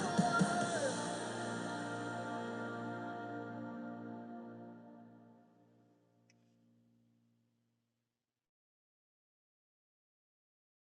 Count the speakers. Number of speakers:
zero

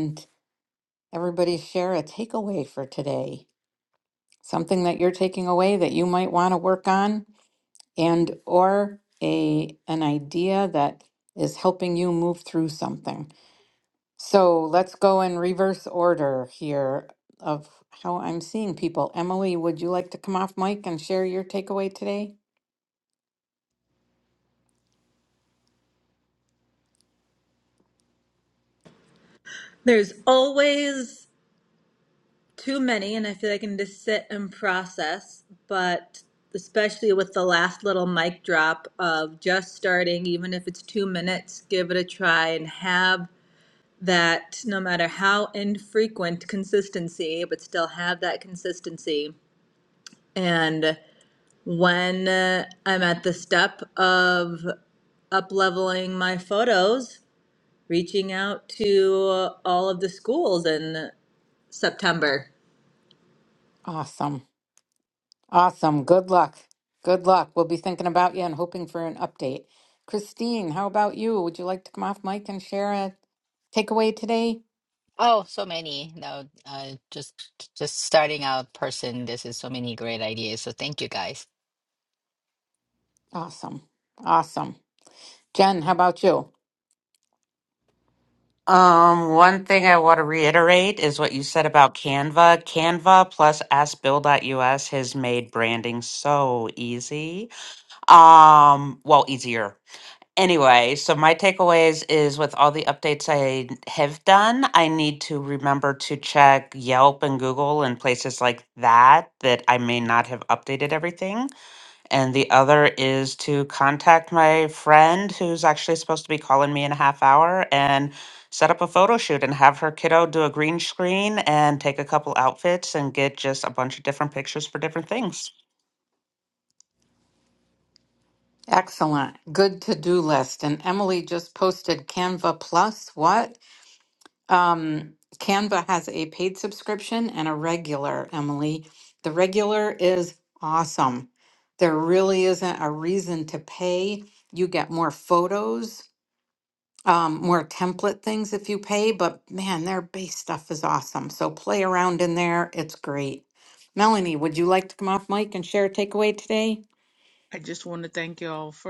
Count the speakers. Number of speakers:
five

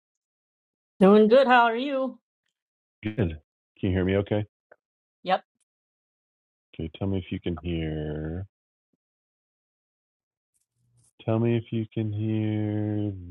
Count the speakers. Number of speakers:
two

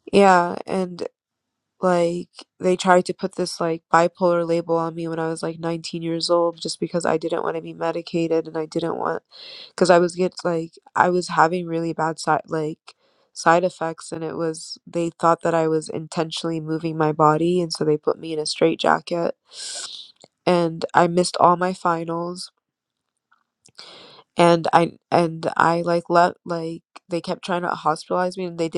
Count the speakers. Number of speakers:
one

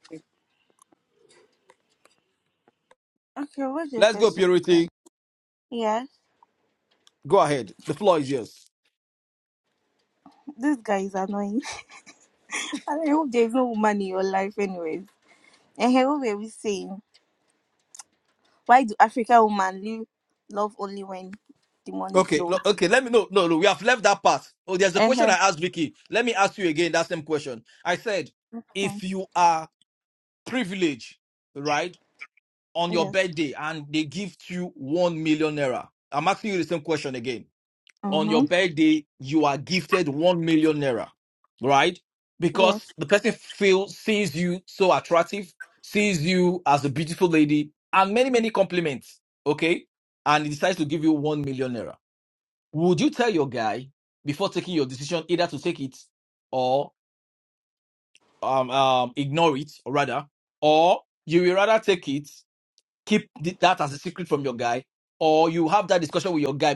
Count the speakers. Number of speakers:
two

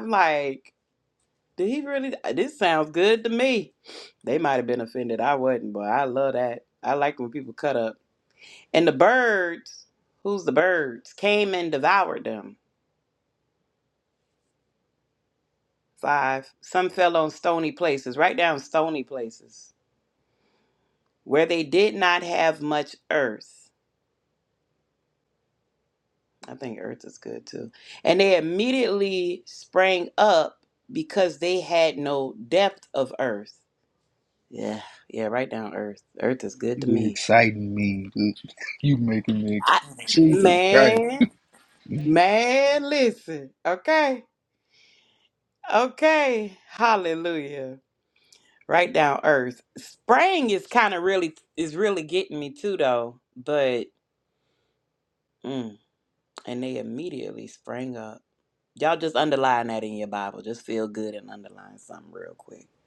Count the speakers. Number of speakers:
two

